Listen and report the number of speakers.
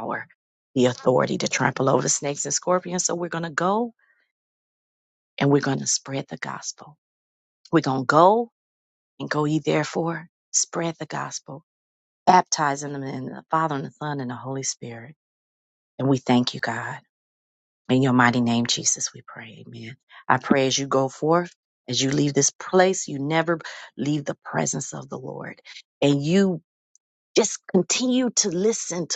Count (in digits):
1